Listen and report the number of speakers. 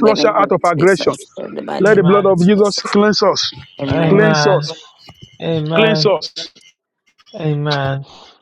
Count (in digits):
3